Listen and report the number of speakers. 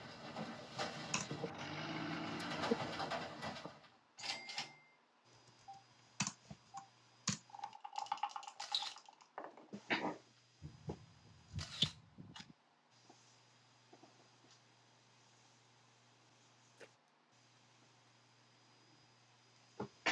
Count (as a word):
zero